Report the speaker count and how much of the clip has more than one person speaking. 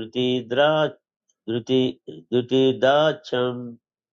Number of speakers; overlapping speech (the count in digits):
1, no overlap